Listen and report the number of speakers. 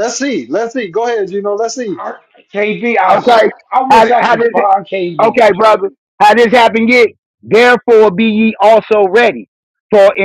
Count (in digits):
3